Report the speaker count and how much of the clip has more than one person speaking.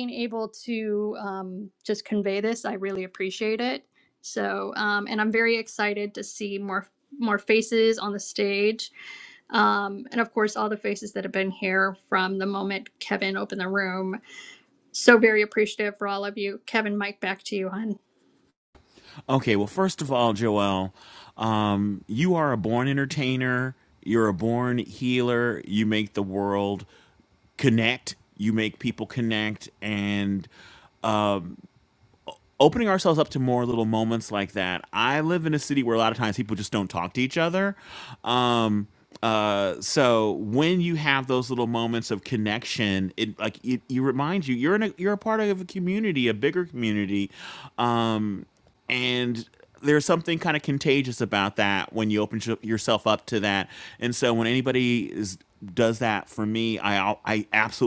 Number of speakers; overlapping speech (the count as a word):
two, no overlap